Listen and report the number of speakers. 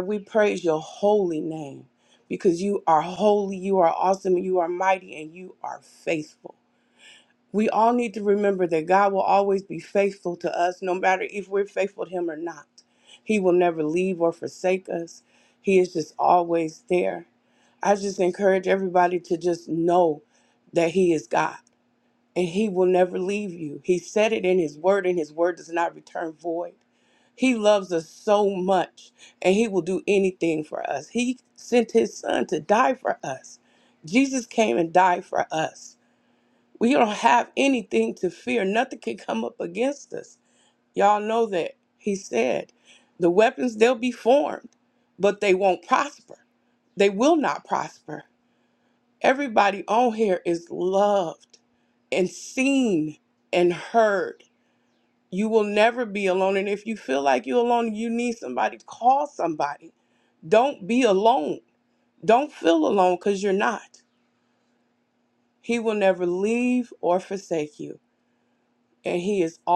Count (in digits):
1